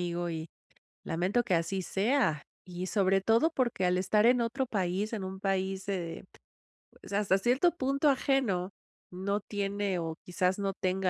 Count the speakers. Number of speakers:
one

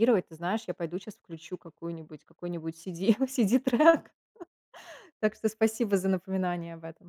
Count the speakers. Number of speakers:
one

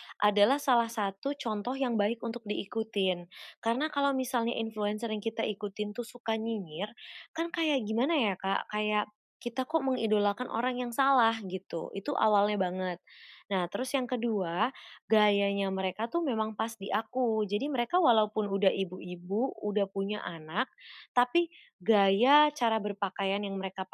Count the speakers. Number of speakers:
one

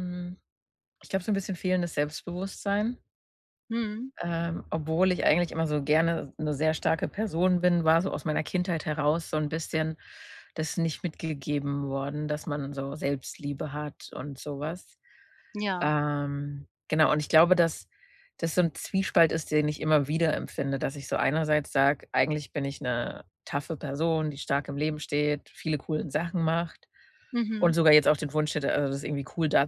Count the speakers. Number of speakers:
two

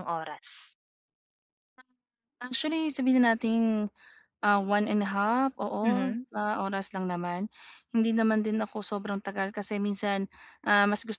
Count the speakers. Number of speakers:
two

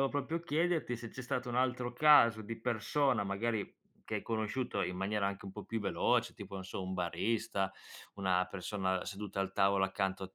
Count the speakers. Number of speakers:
one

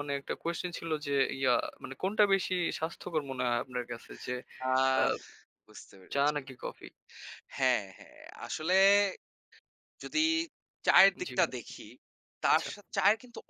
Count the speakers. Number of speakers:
two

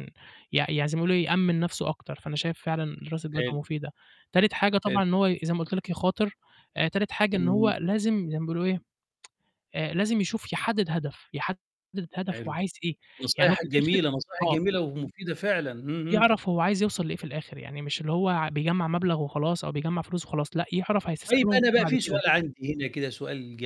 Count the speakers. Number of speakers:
two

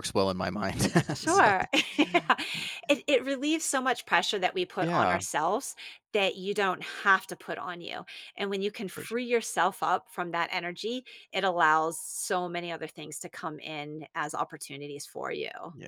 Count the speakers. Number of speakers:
two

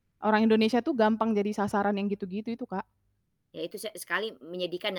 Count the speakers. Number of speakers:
two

